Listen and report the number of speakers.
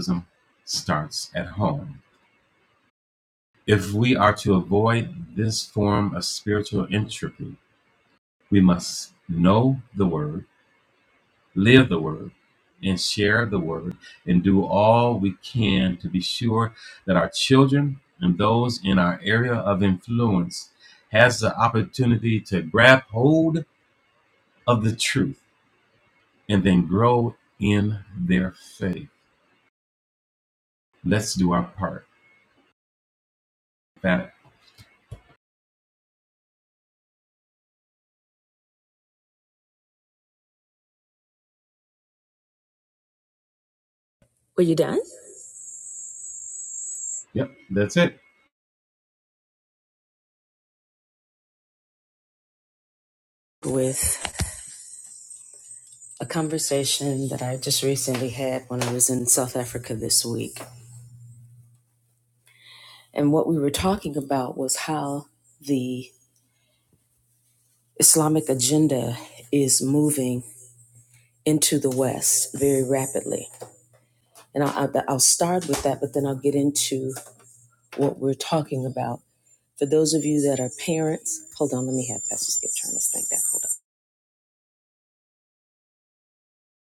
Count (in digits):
2